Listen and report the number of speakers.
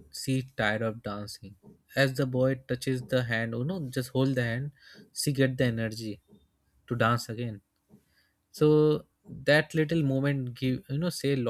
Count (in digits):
1